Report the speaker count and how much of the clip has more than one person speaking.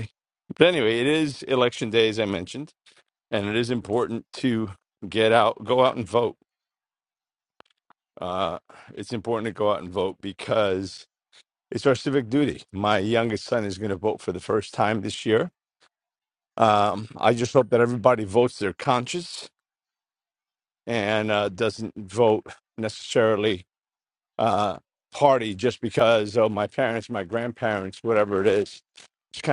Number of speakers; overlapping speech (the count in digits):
1, no overlap